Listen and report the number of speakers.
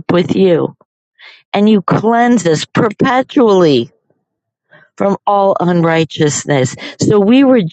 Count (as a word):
one